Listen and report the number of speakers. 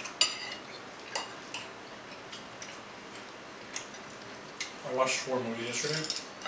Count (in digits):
1